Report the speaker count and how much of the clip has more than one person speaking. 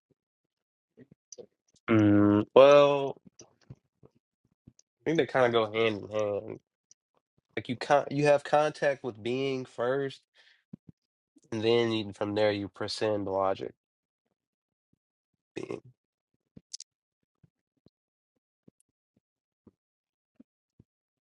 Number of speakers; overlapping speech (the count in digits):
1, no overlap